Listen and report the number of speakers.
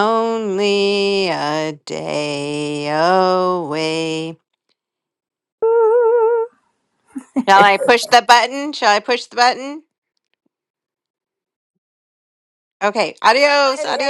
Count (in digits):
2